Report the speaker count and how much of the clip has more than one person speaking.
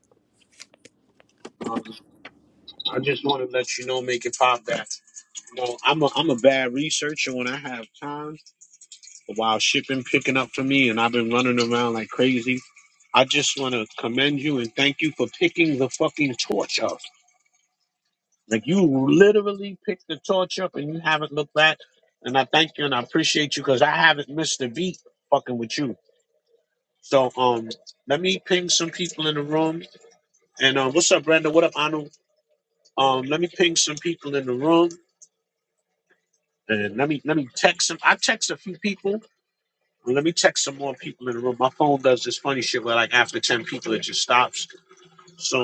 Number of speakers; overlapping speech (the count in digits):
1, no overlap